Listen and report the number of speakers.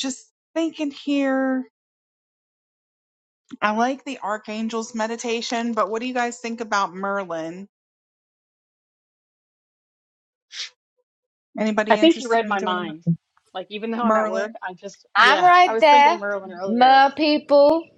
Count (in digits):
3